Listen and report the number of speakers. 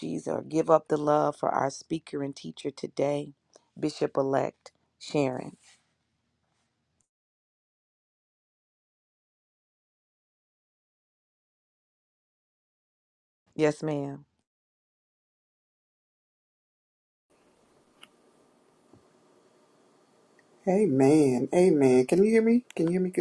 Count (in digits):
2